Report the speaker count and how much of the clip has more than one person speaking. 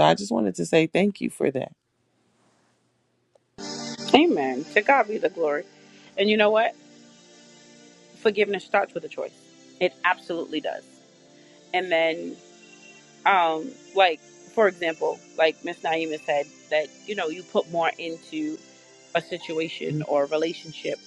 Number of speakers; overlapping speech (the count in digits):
2, no overlap